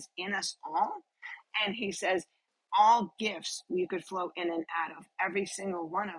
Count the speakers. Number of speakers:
1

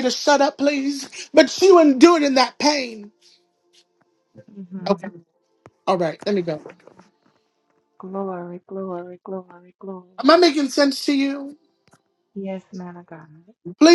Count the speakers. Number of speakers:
2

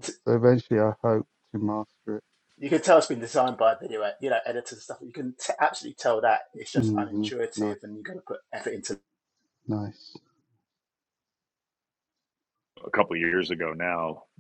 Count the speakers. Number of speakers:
3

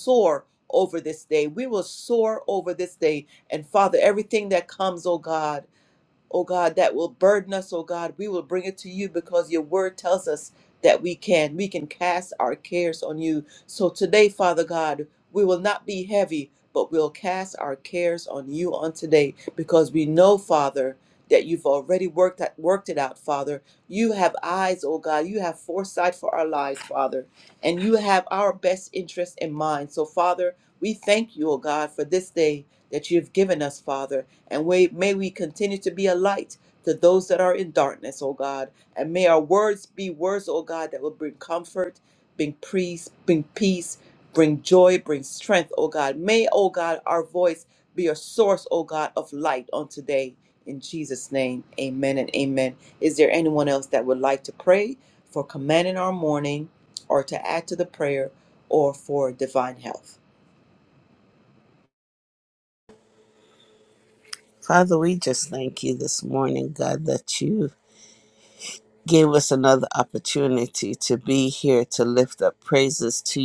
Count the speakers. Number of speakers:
2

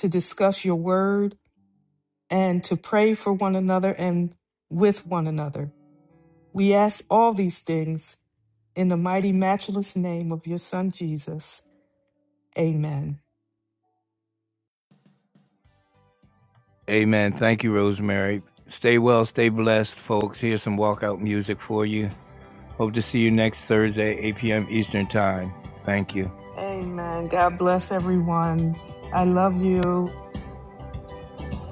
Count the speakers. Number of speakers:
2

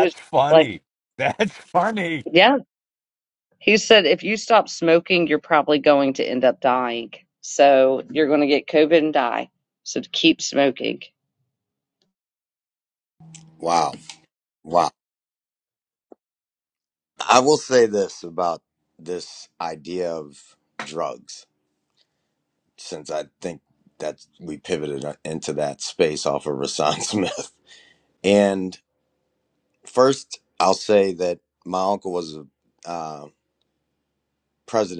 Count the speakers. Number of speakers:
3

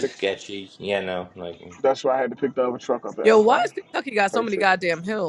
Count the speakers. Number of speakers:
3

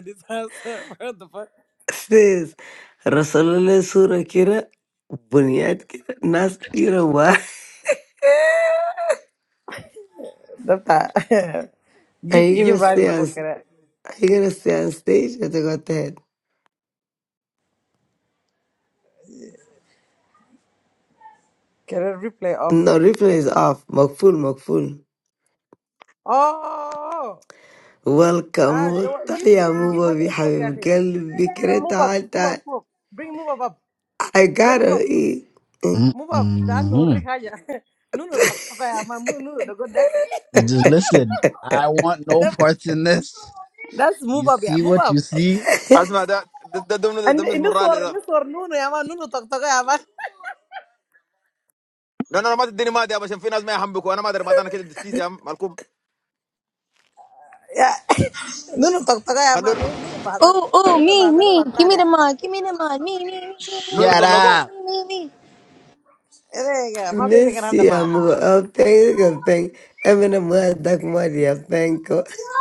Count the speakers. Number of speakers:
5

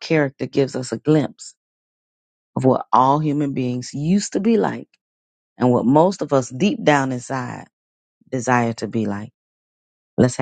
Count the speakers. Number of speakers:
1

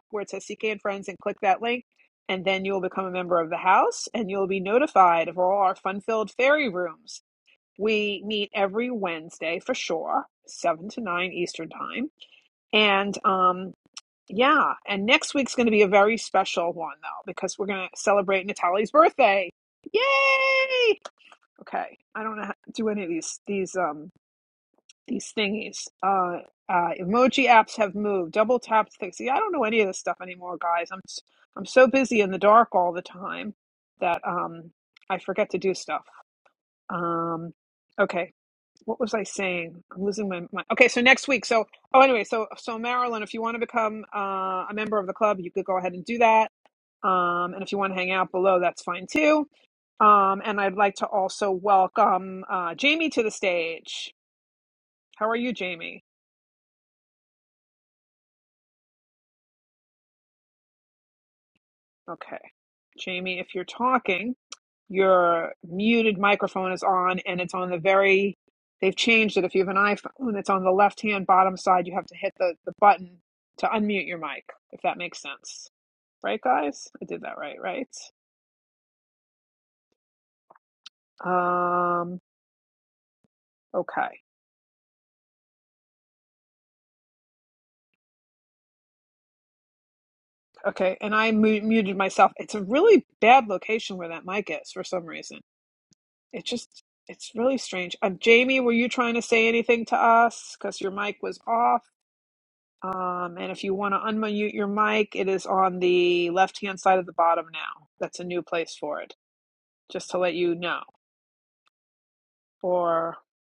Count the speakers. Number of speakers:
1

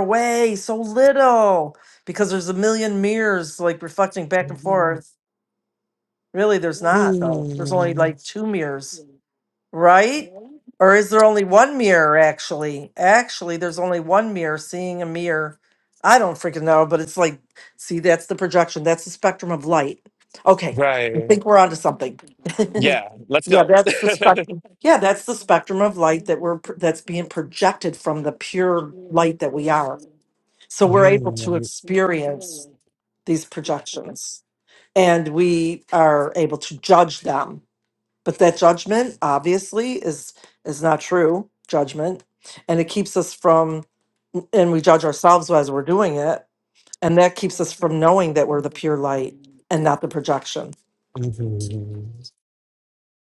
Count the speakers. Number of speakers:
2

